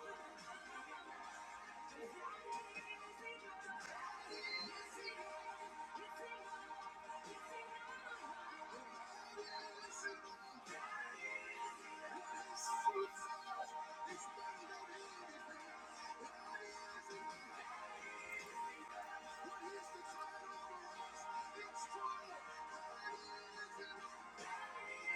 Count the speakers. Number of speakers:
0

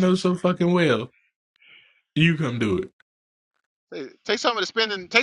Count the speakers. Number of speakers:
2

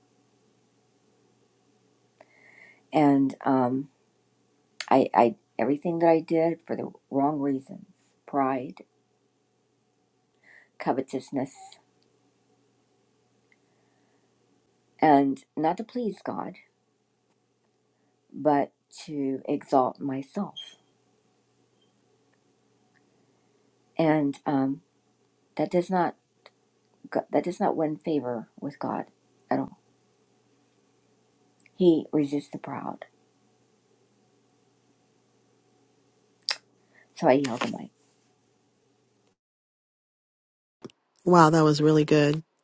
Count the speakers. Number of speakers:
2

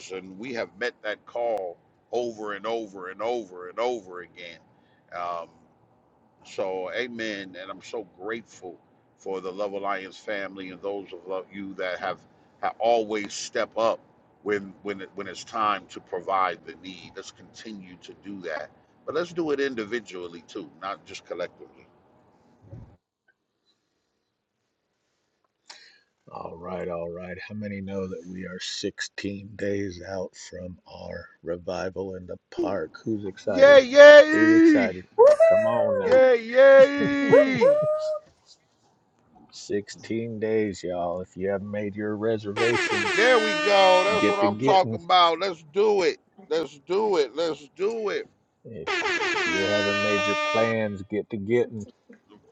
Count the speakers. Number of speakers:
3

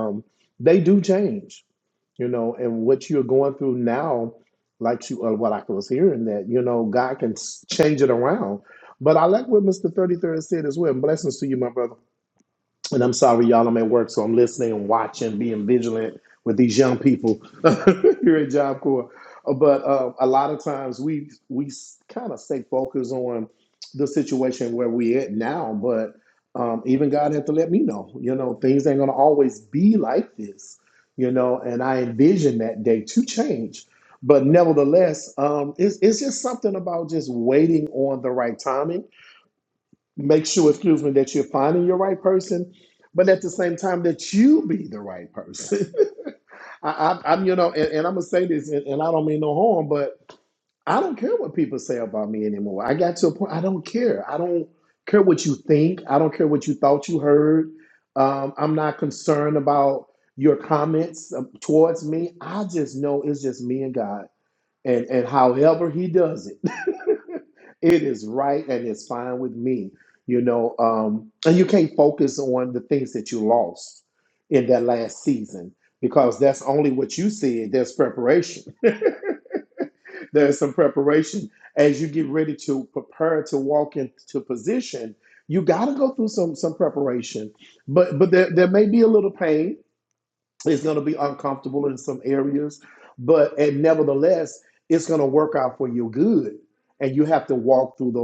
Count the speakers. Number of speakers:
1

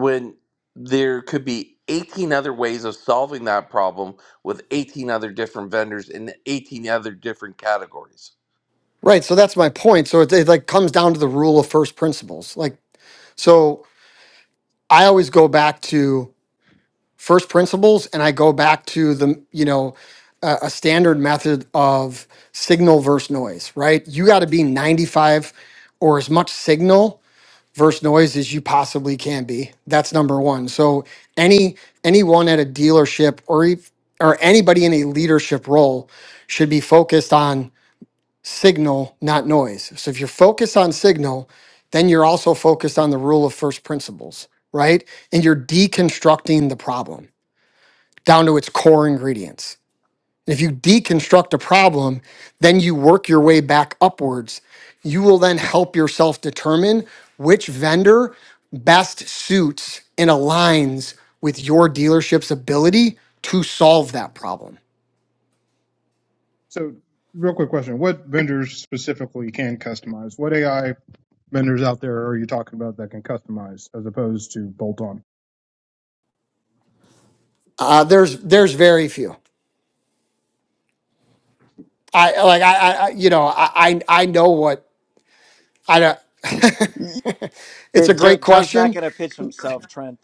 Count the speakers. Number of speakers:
4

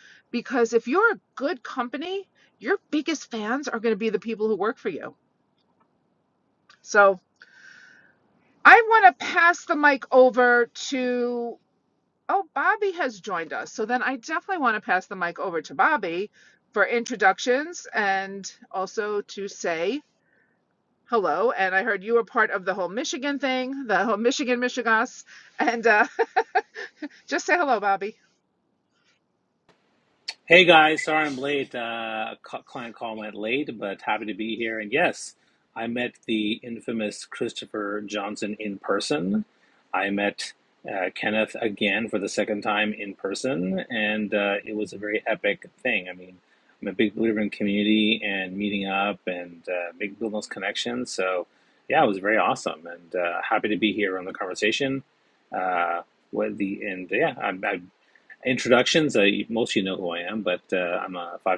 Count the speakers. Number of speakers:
2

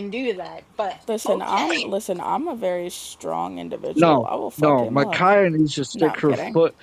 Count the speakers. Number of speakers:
3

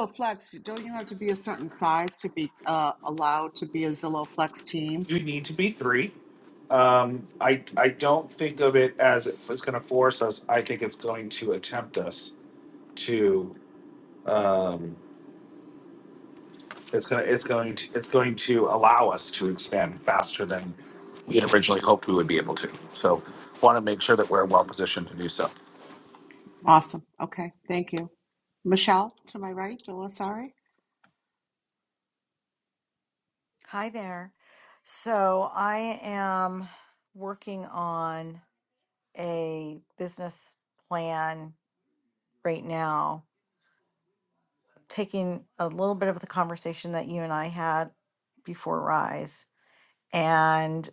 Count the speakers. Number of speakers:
3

